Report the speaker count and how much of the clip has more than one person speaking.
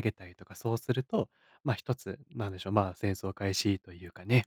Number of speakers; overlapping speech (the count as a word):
one, no overlap